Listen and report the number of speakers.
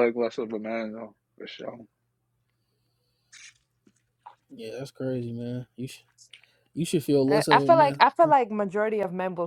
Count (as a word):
three